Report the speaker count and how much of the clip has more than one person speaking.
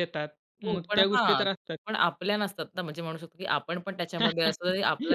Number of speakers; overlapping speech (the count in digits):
2, about 17%